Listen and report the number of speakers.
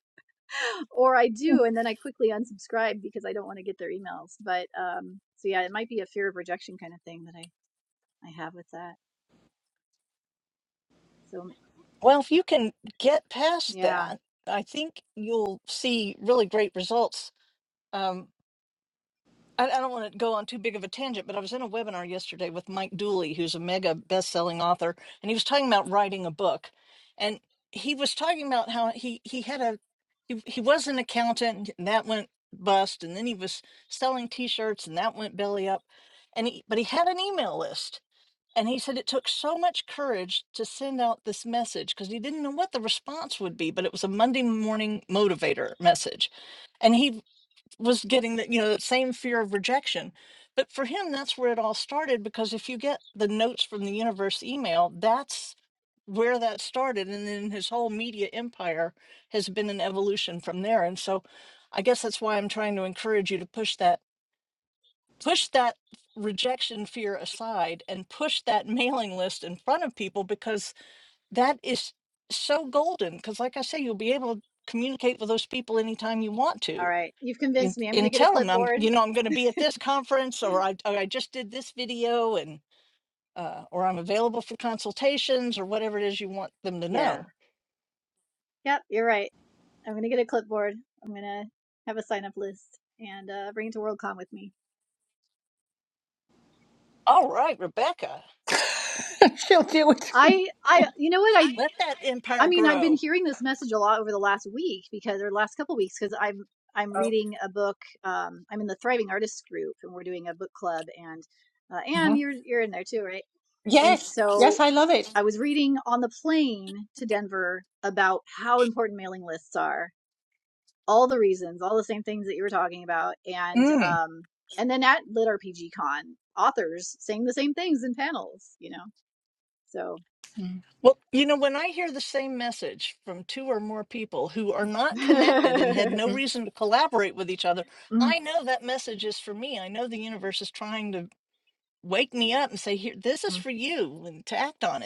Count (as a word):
three